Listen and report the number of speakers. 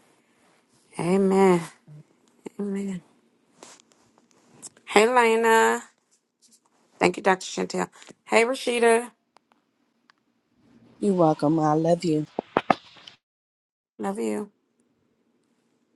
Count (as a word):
two